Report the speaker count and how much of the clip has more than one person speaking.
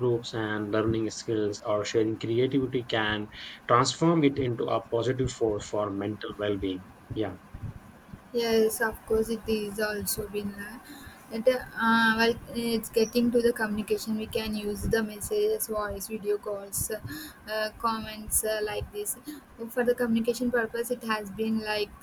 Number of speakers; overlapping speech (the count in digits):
2, no overlap